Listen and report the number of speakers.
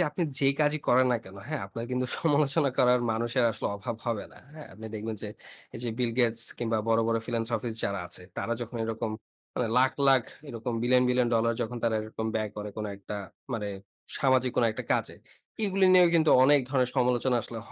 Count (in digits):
1